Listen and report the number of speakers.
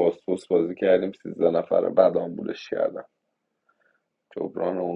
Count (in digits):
1